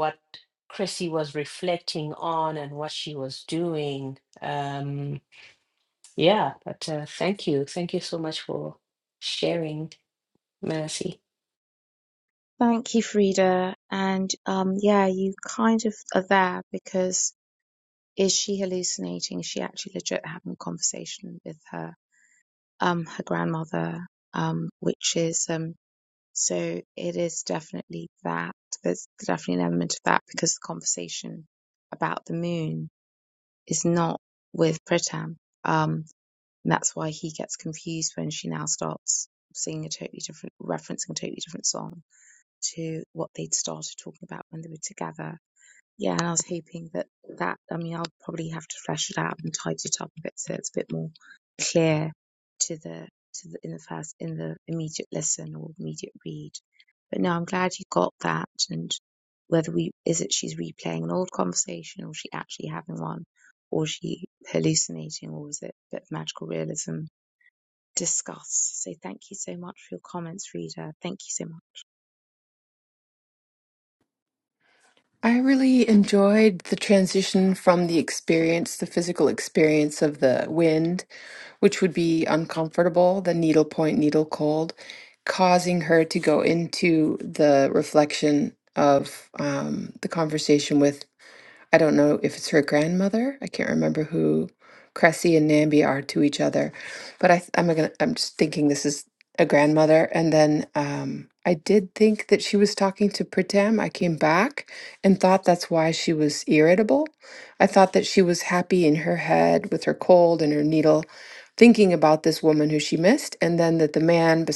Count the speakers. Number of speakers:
three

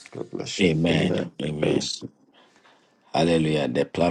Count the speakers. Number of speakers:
two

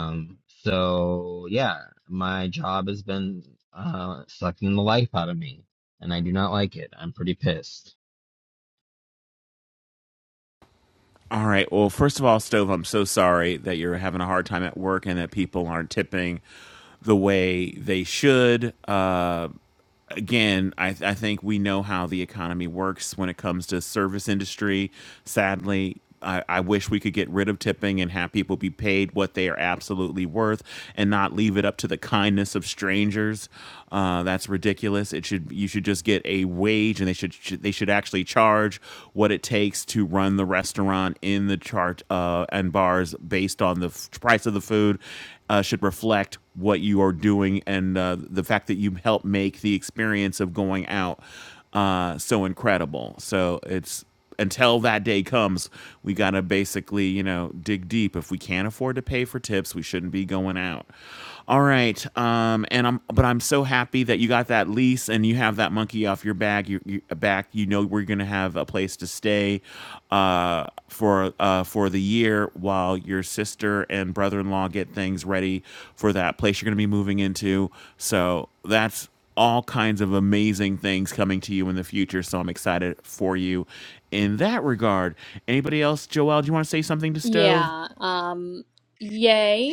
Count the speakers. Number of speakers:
three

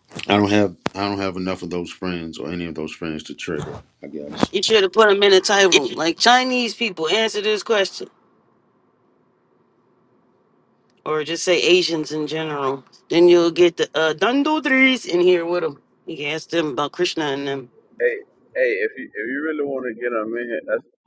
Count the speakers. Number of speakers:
three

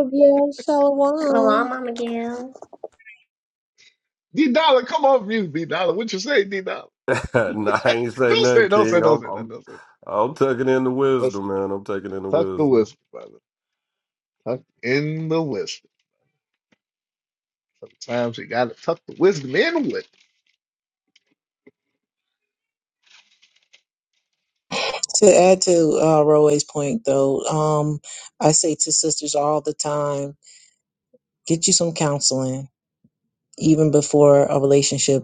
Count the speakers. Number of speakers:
four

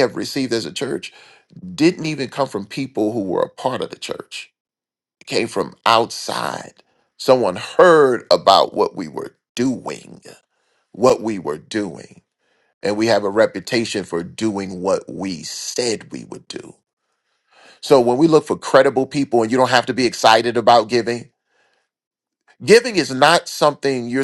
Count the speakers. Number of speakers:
one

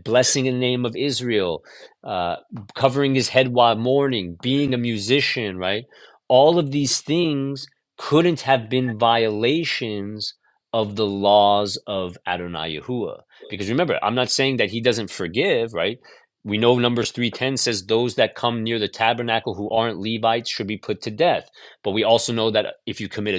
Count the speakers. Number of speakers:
one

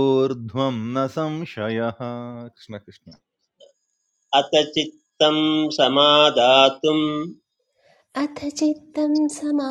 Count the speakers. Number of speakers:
three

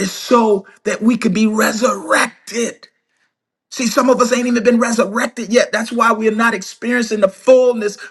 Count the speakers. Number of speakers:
one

